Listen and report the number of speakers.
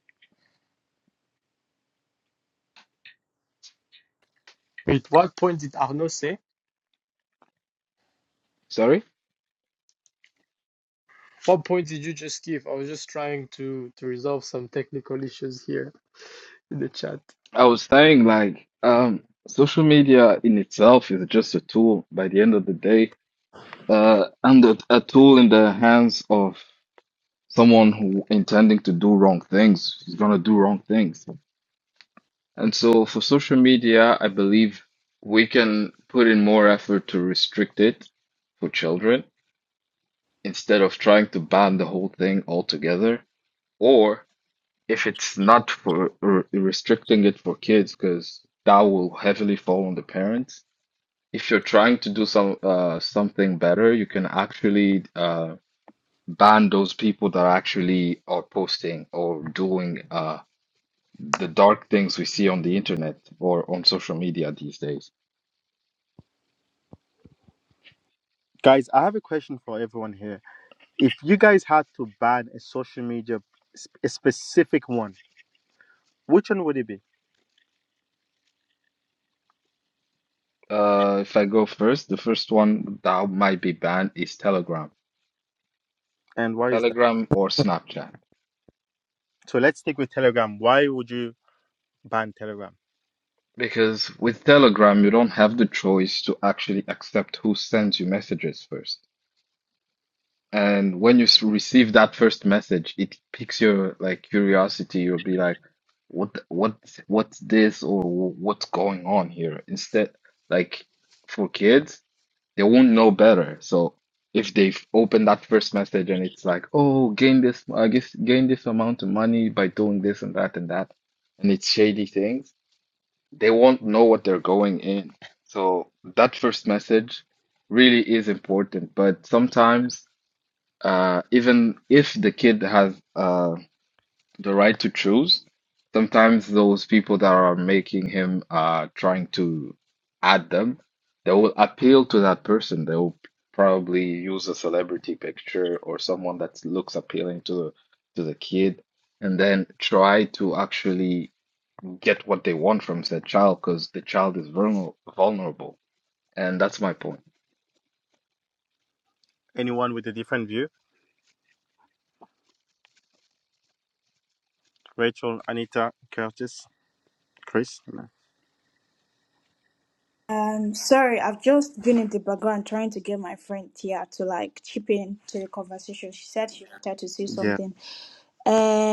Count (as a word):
four